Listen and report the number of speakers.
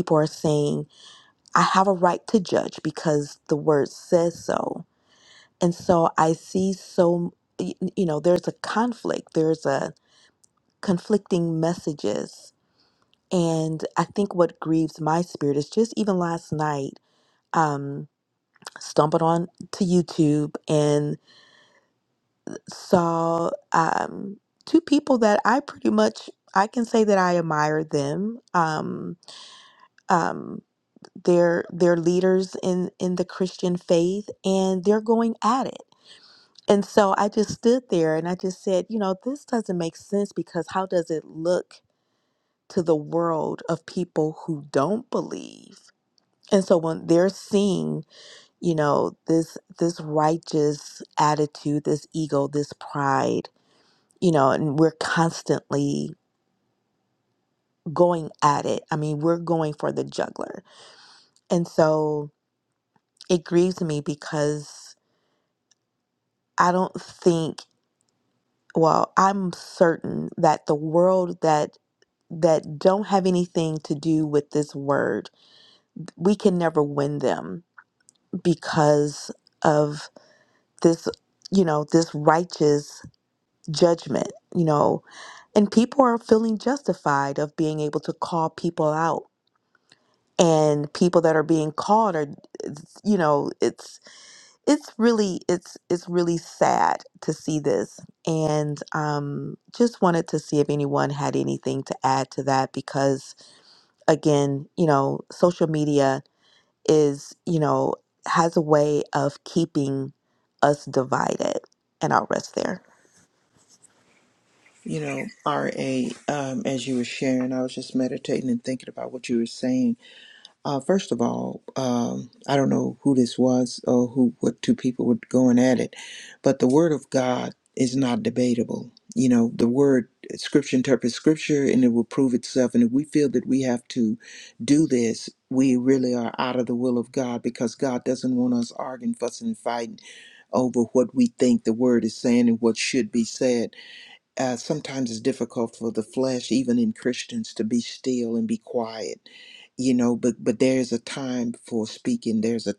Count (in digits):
2